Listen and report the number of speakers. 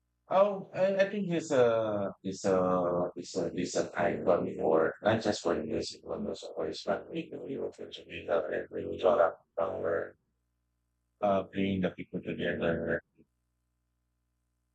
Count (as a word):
one